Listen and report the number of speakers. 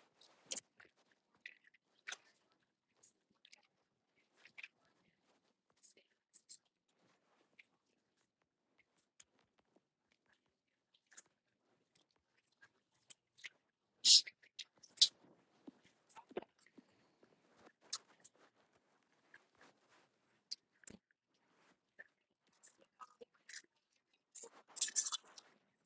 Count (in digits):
0